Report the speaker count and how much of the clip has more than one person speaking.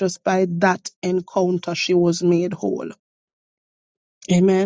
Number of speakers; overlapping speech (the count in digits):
1, no overlap